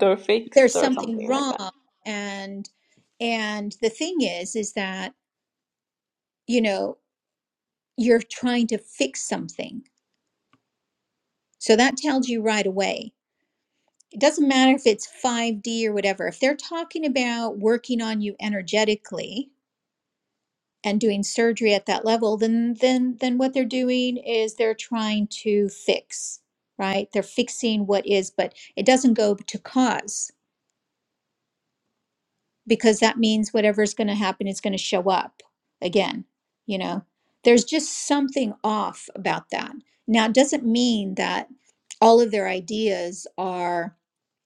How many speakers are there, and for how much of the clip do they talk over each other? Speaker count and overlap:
2, about 2%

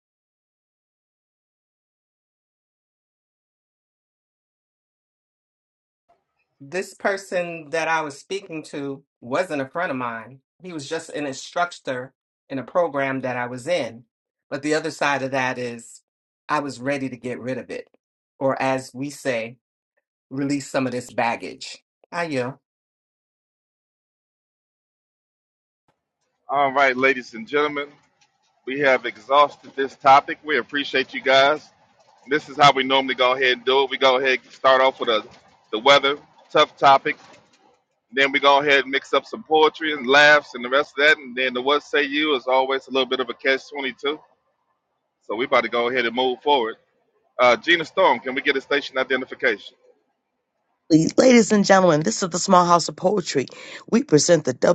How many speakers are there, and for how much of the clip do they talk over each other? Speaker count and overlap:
3, no overlap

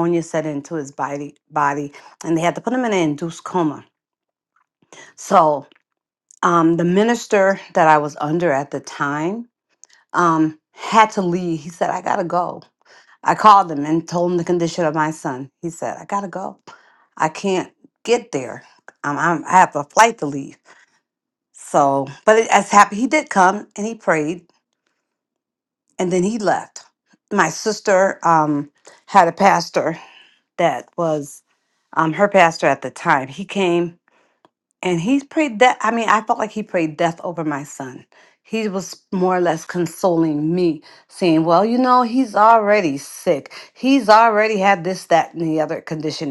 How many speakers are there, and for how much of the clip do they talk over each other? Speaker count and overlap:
1, no overlap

